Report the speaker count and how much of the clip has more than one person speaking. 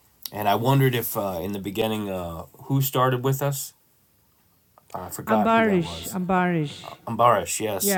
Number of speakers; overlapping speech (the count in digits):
2, about 12%